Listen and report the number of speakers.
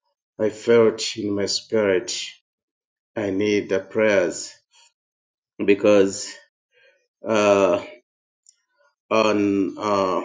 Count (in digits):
1